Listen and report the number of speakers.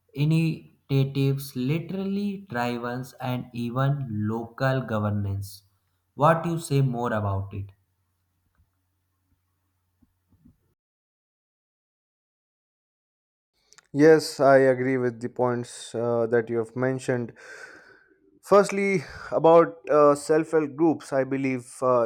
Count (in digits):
2